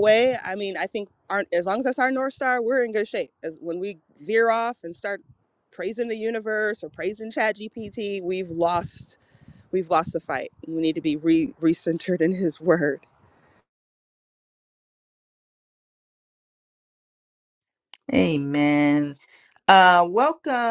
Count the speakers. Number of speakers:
2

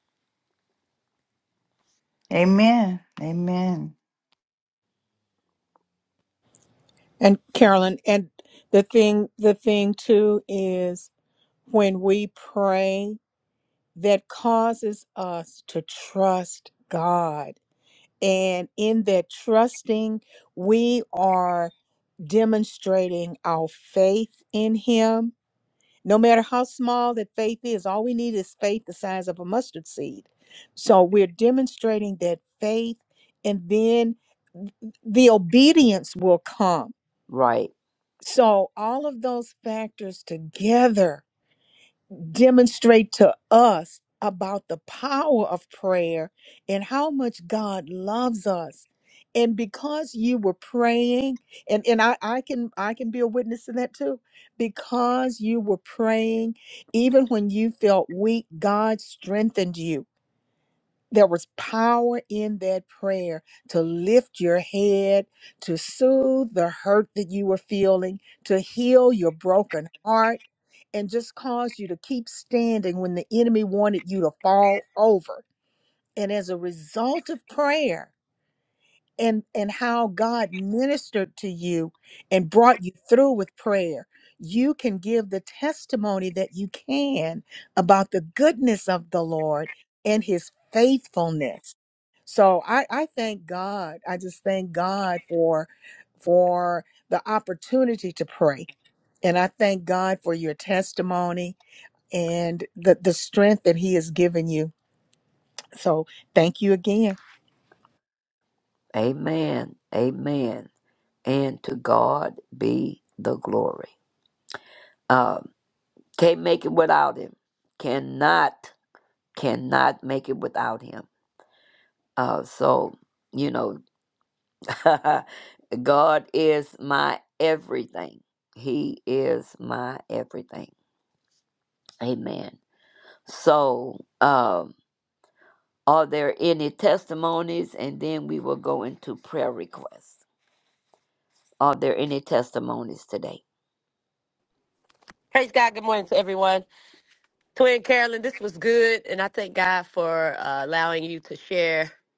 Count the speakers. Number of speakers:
4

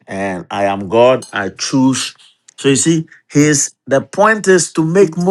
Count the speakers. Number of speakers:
1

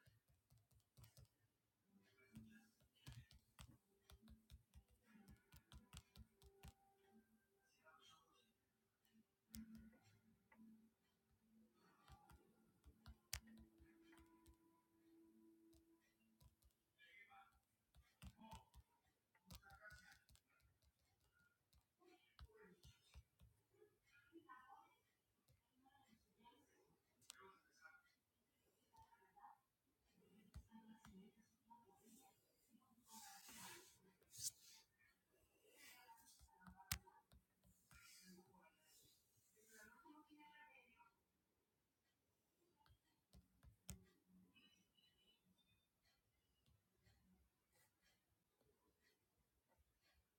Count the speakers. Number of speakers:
0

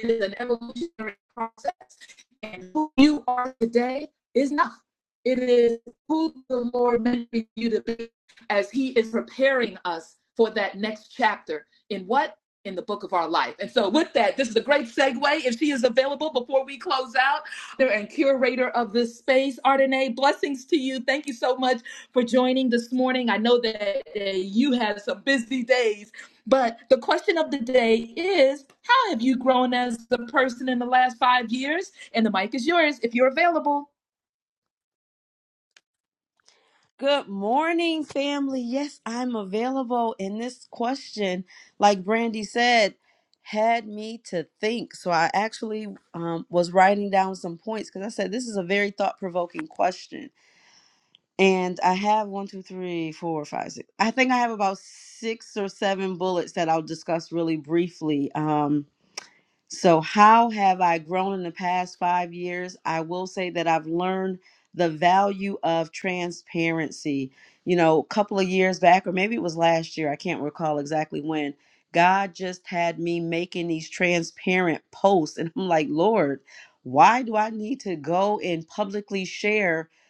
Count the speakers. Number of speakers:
2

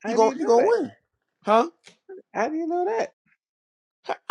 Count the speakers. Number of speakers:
2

